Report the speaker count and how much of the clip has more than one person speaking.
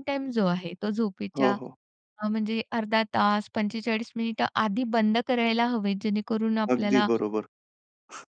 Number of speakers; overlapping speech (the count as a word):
two, about 8%